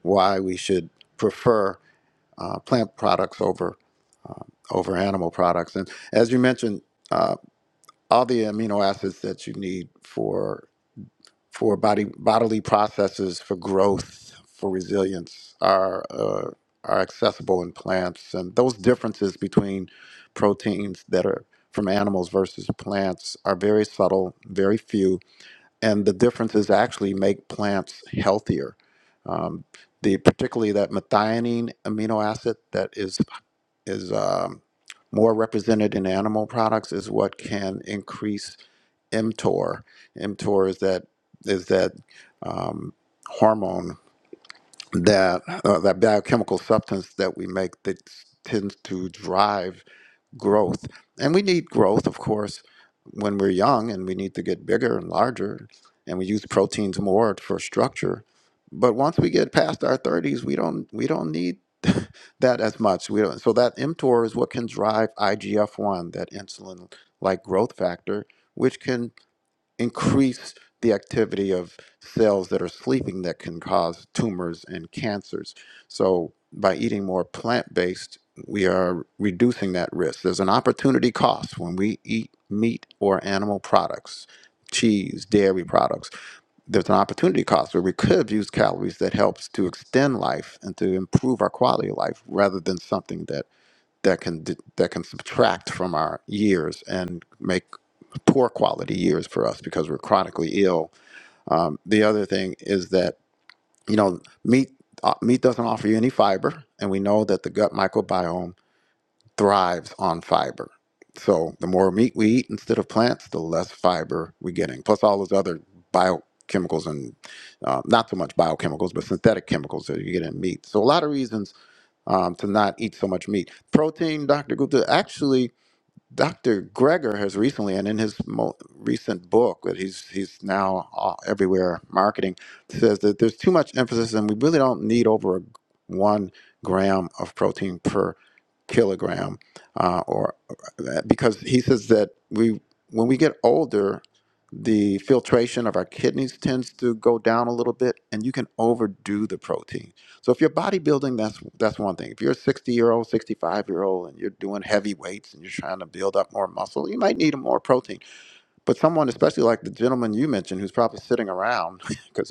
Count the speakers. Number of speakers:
1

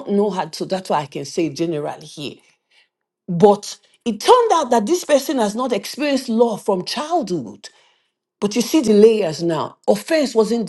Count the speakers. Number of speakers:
1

